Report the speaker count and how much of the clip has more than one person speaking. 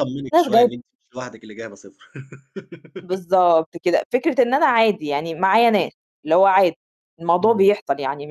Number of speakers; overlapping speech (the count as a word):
two, about 12%